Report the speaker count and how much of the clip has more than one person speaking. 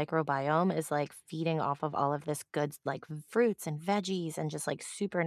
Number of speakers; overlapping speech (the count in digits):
1, no overlap